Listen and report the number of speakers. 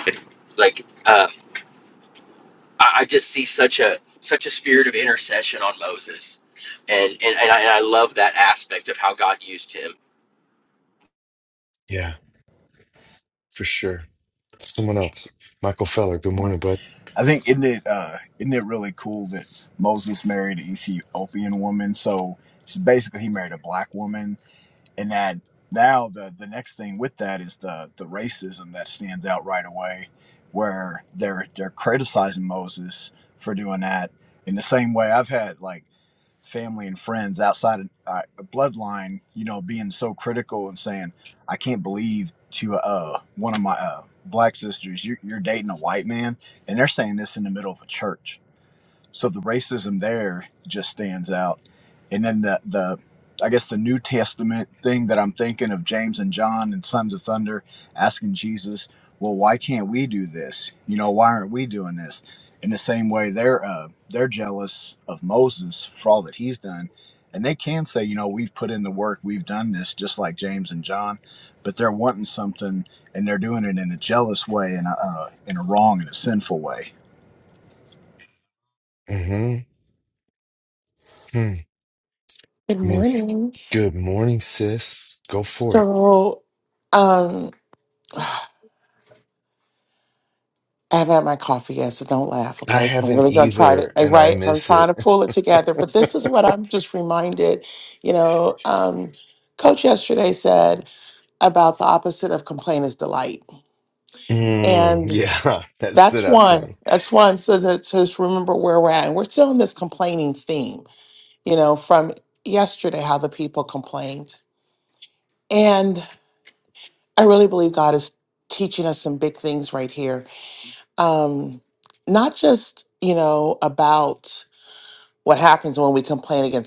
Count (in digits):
4